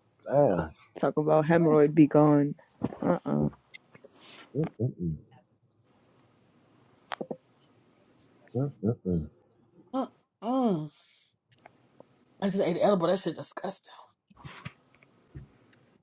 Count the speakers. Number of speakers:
3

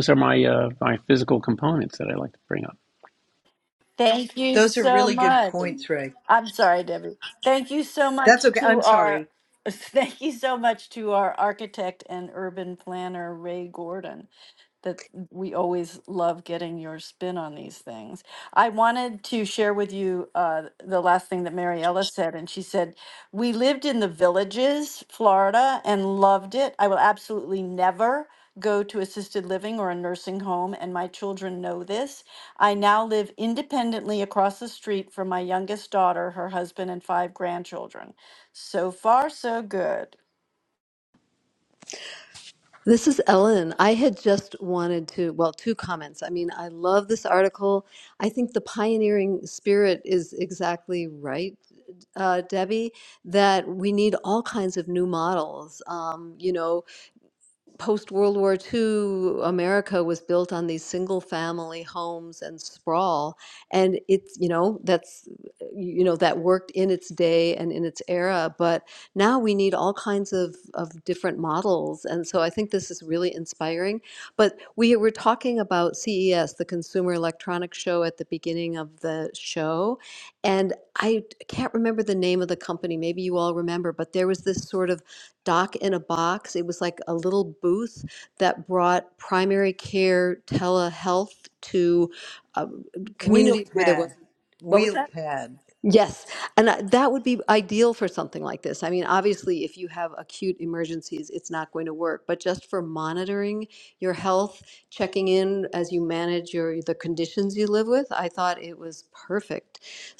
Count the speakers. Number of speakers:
4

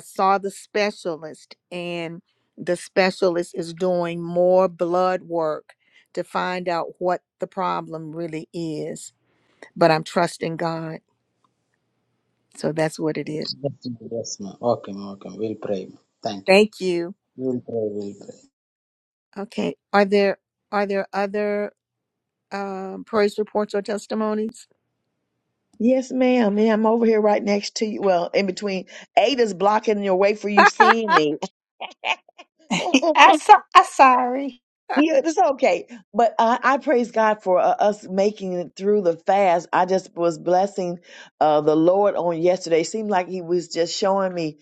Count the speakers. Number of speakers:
4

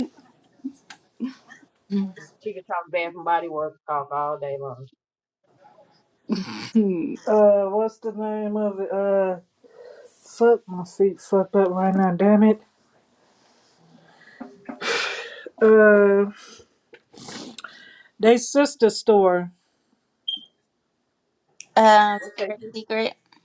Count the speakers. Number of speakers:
3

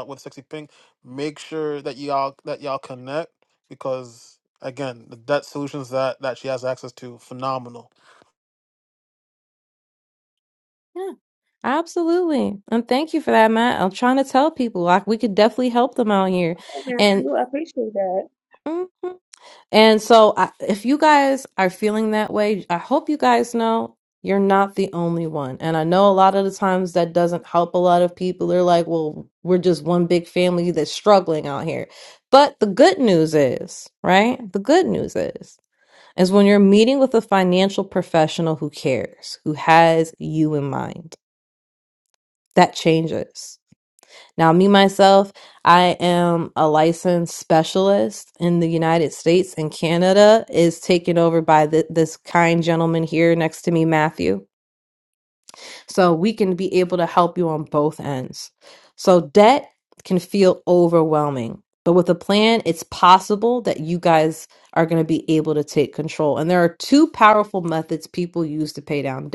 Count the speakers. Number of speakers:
3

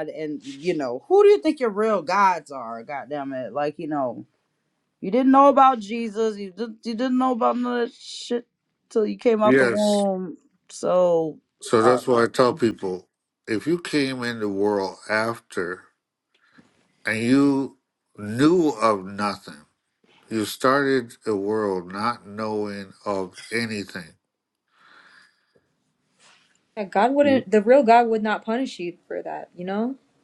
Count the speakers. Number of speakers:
3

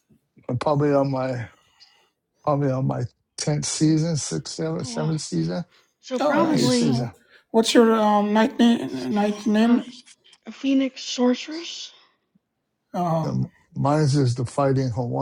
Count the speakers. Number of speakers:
3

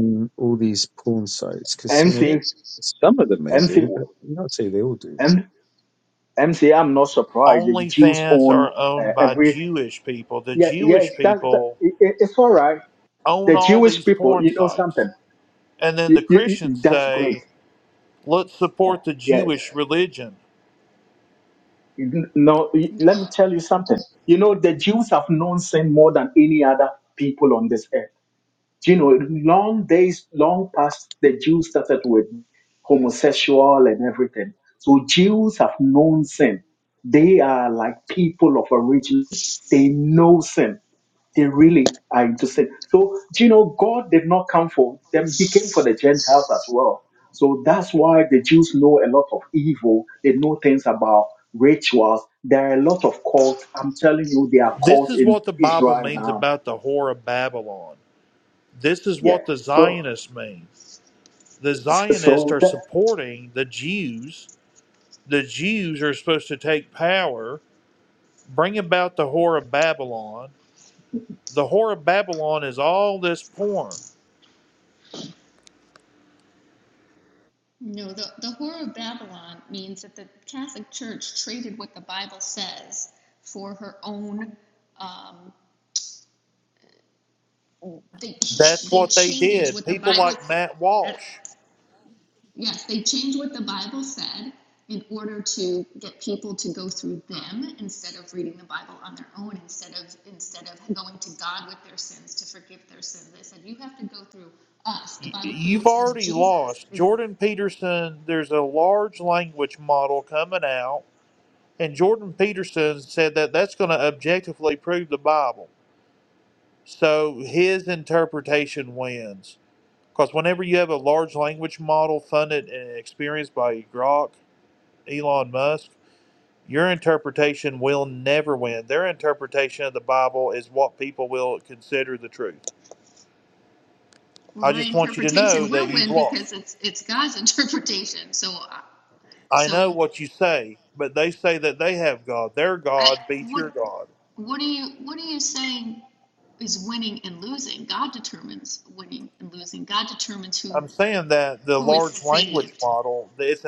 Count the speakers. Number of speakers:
4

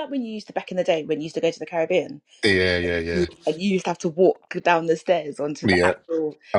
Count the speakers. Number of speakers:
2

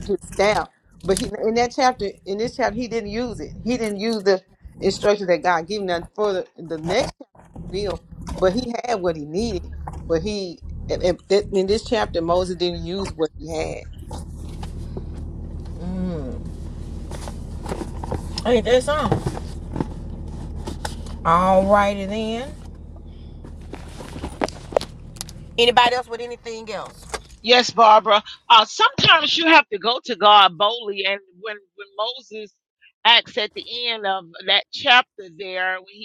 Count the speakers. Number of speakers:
3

